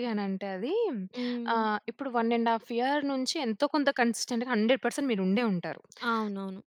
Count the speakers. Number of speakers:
2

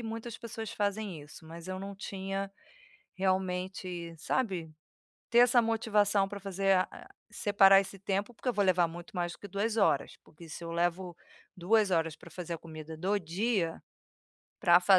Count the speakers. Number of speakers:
1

